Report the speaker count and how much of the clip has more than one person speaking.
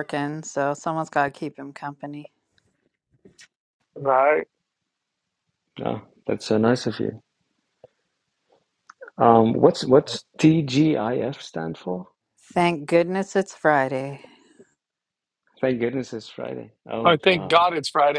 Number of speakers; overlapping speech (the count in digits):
3, about 3%